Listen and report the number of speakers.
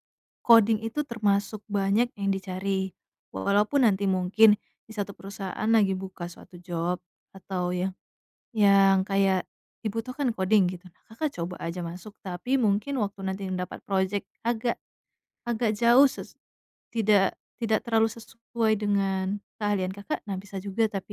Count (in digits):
1